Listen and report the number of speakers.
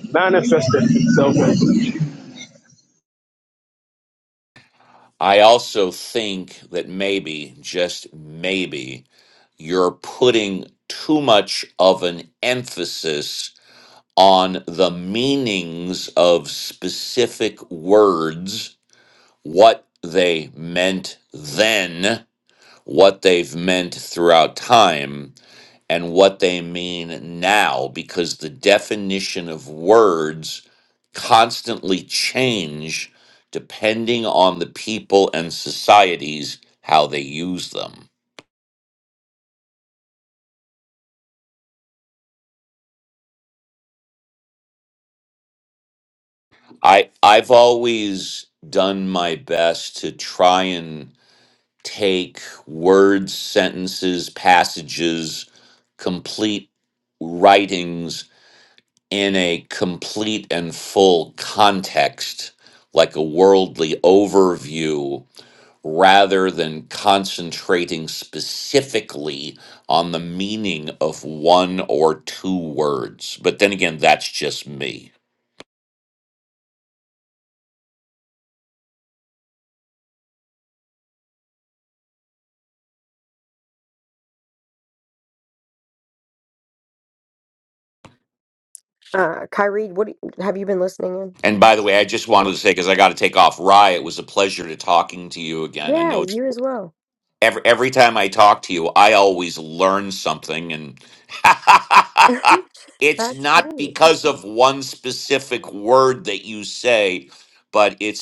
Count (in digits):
3